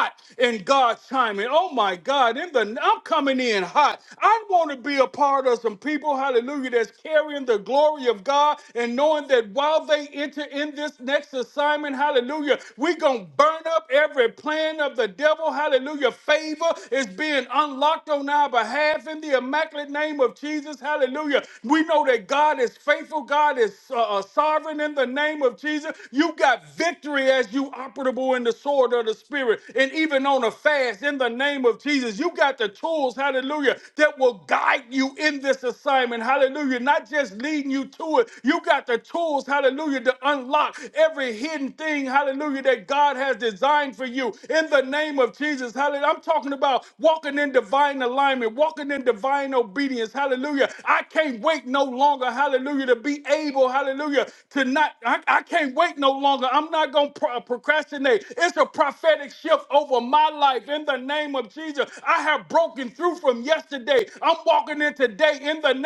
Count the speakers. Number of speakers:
one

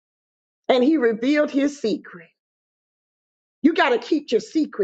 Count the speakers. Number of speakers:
one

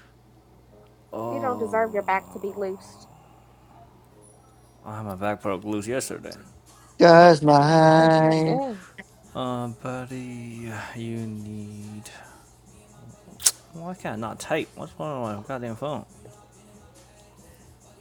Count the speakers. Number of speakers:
three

